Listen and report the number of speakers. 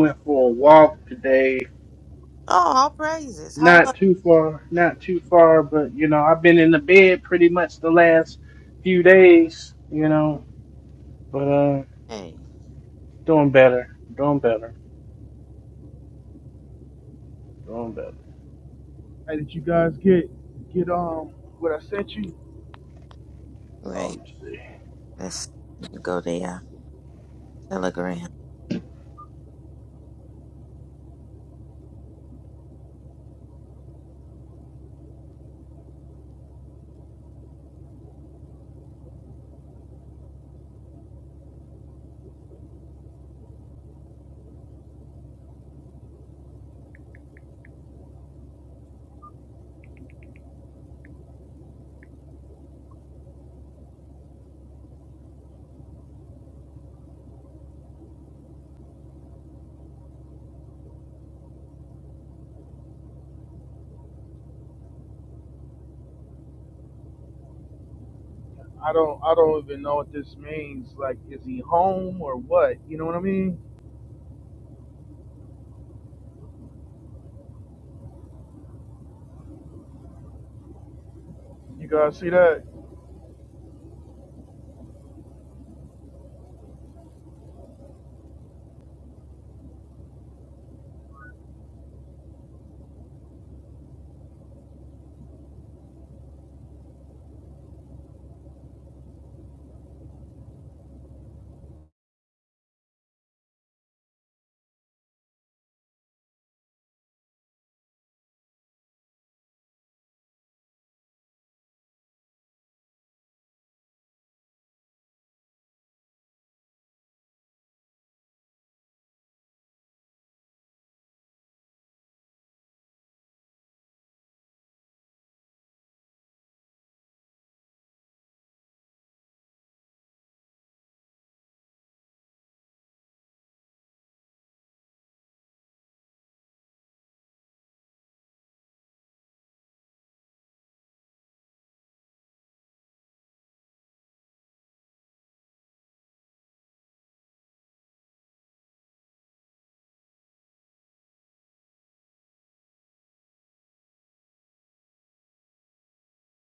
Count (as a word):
three